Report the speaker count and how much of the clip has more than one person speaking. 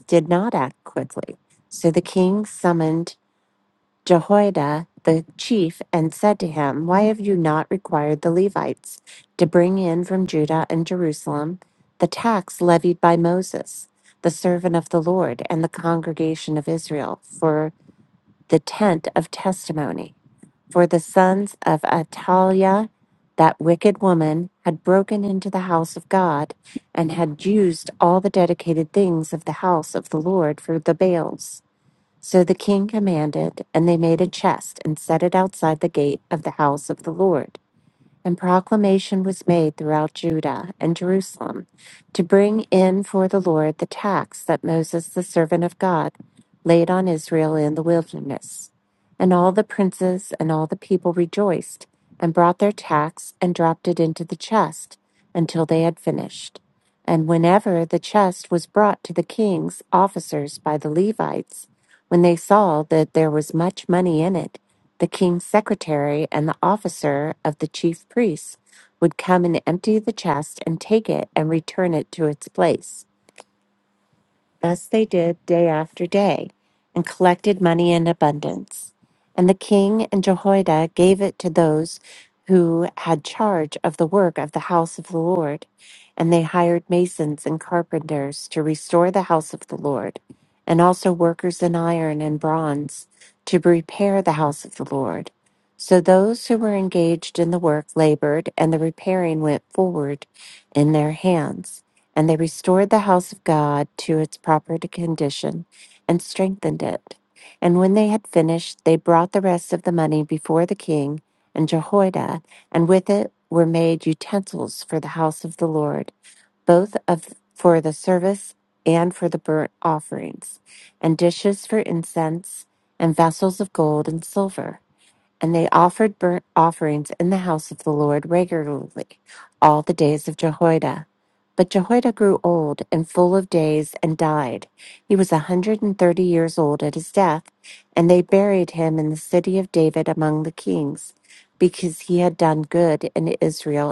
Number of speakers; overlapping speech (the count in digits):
1, no overlap